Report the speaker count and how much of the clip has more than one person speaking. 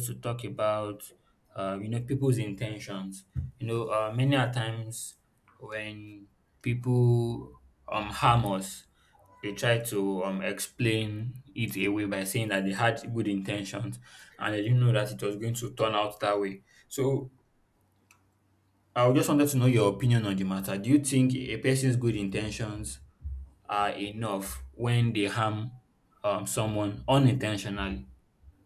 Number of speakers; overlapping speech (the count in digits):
1, no overlap